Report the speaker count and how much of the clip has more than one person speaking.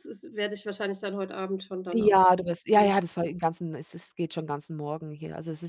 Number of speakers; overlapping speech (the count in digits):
2, about 8%